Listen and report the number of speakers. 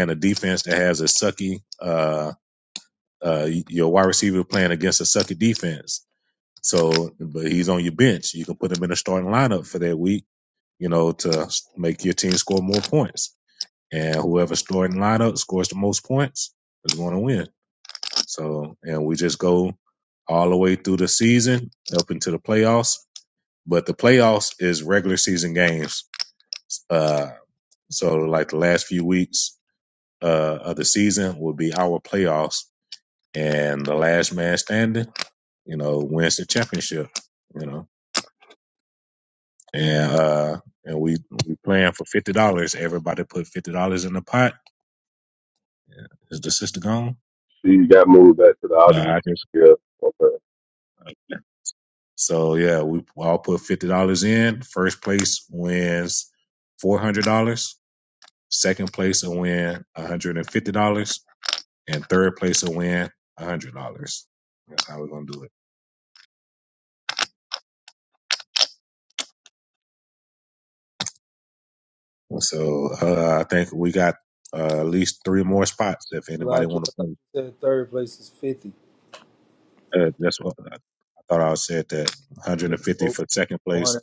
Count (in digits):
3